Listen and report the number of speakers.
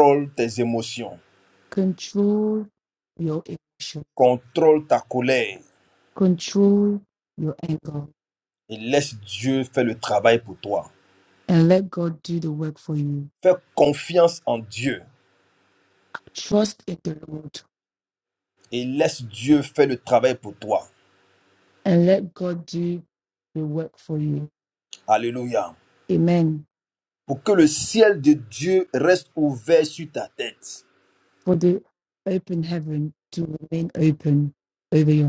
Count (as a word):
two